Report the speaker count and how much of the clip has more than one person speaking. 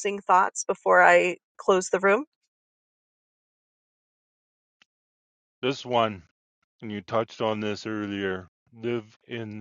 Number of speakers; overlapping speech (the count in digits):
2, no overlap